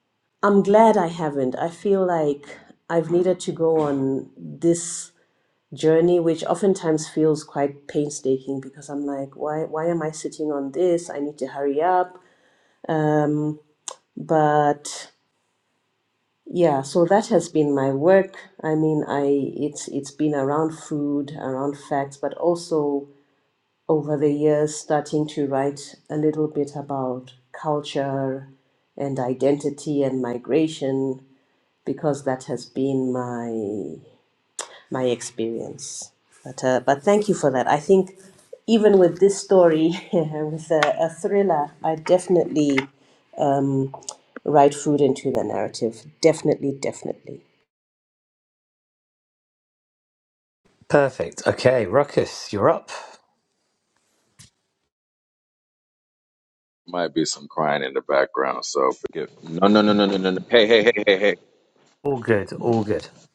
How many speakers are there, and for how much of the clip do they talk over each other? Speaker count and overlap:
3, no overlap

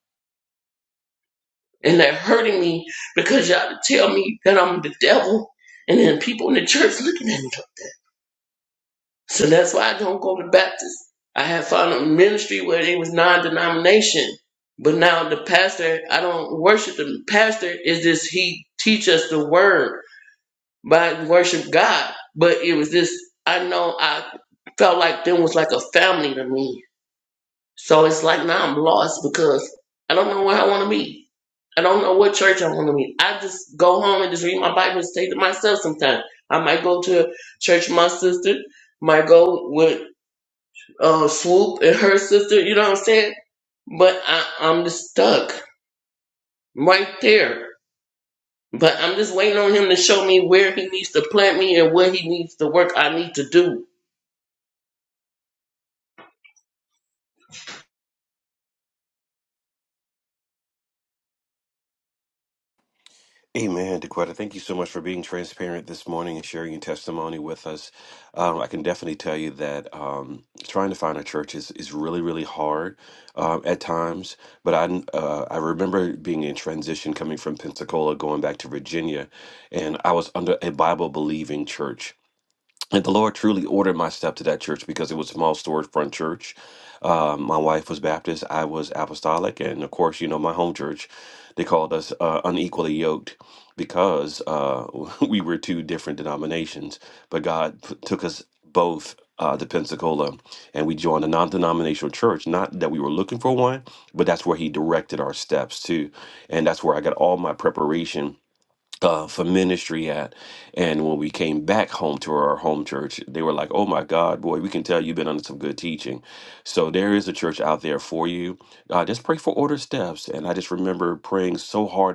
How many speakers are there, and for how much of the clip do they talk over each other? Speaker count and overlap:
2, no overlap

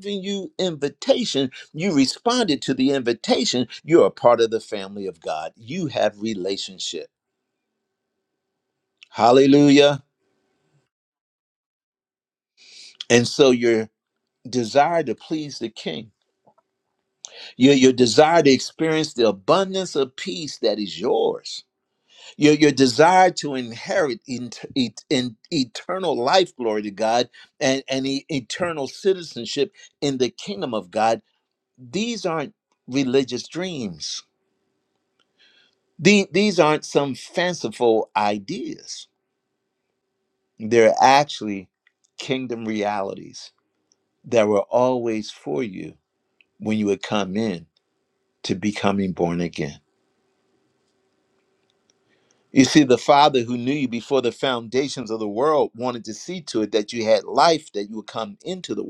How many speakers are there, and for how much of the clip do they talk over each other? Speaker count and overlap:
1, no overlap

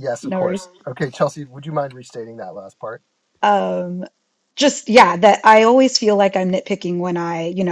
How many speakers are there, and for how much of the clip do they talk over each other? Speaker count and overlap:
2, about 5%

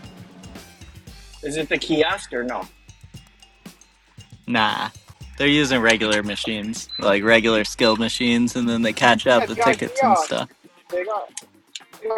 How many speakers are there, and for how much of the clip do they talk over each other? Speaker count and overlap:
3, about 6%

